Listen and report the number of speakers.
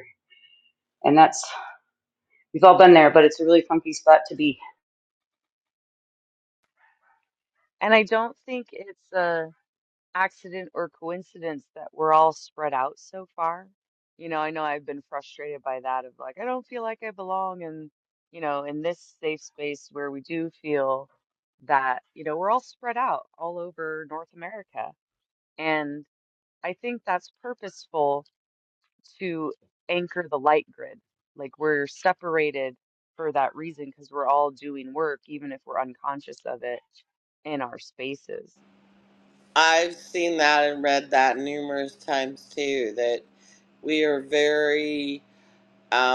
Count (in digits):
3